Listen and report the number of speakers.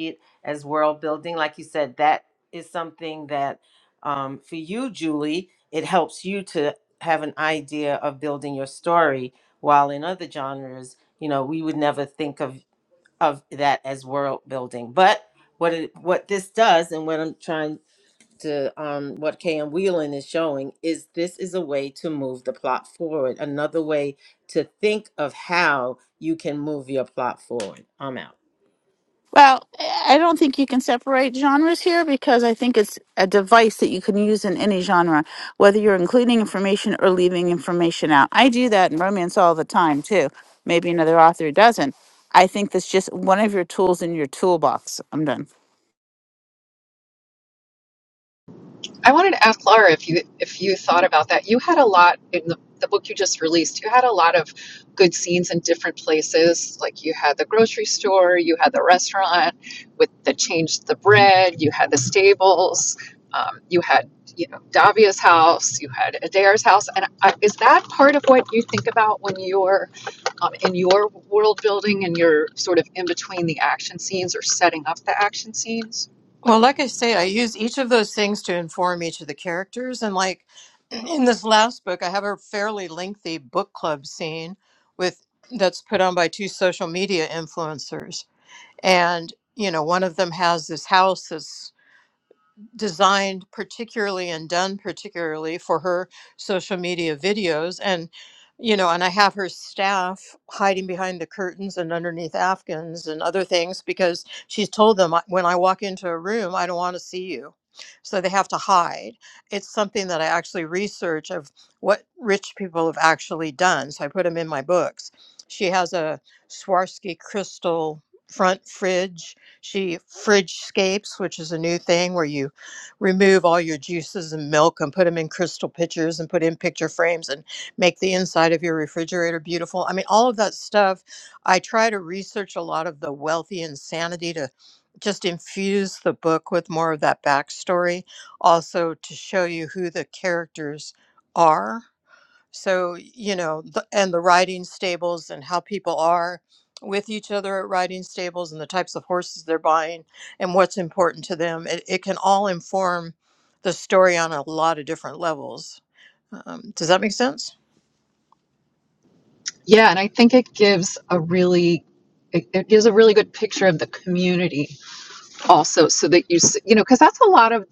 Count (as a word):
four